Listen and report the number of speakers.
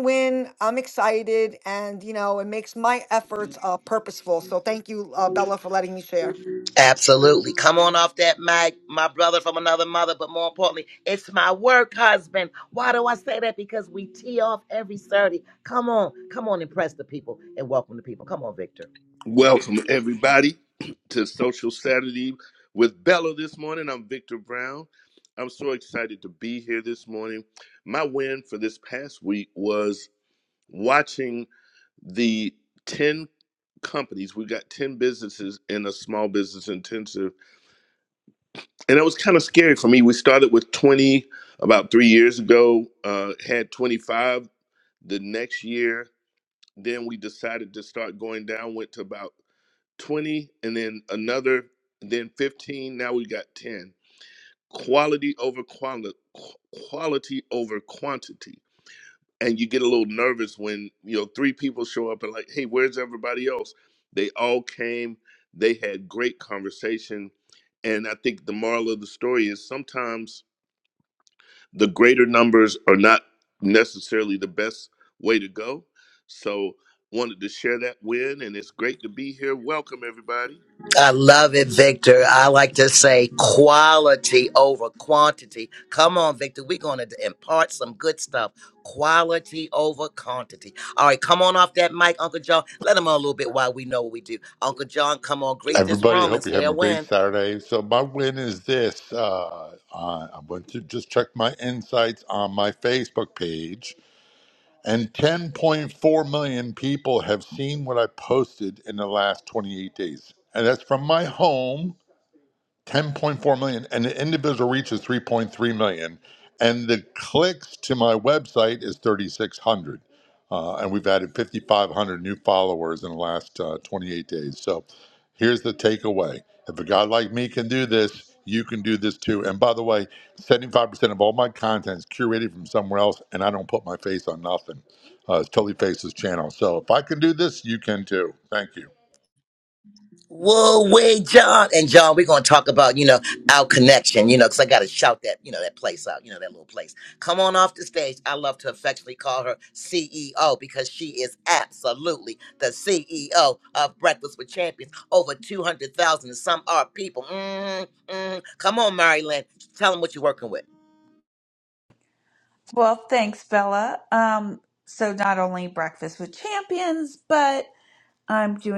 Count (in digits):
5